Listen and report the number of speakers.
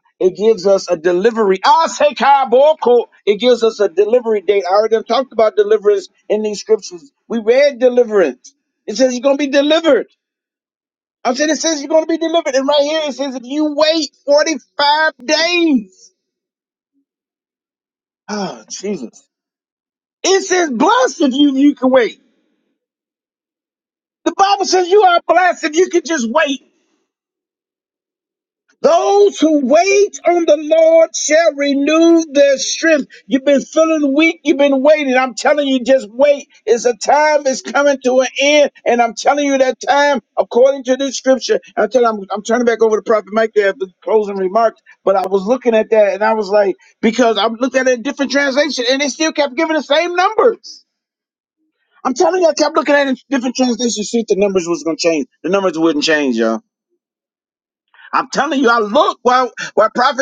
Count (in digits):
1